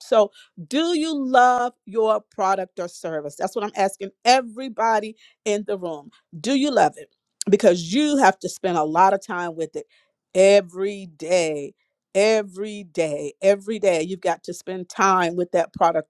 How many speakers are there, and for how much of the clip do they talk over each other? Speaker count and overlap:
1, no overlap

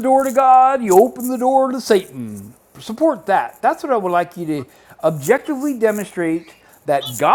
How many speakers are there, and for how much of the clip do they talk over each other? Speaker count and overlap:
1, no overlap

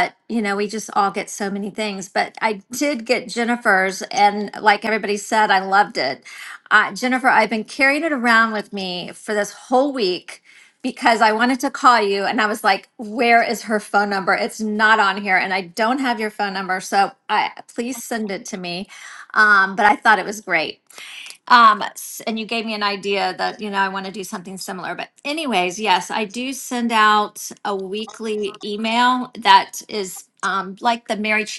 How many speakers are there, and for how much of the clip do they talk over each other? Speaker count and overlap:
1, no overlap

